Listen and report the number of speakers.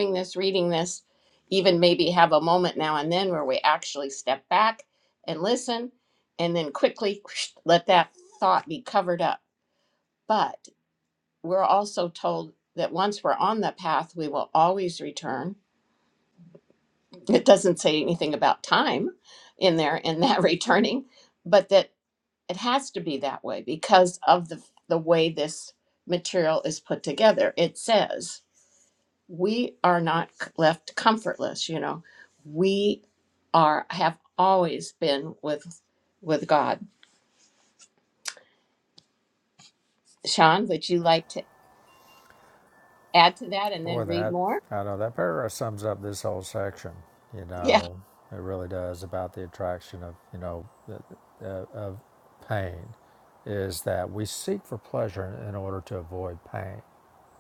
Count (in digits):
2